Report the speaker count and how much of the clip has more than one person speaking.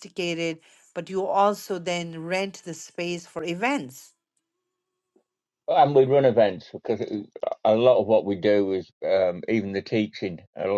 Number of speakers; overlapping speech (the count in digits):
2, no overlap